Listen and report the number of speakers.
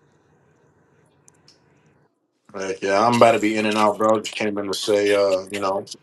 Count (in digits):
1